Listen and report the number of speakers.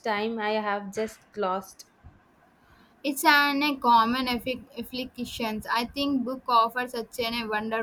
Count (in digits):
2